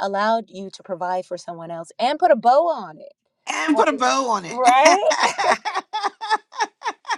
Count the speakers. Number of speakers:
2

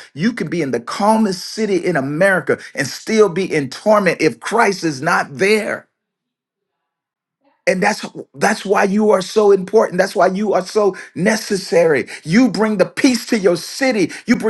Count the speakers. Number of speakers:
1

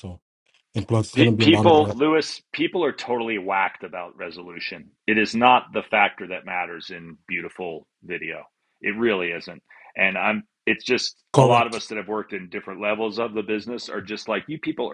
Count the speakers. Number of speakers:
2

